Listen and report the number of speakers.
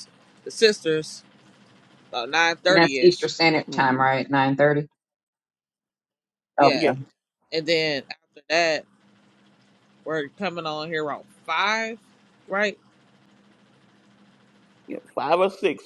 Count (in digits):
3